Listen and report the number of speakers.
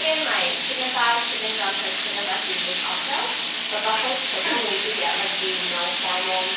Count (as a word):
one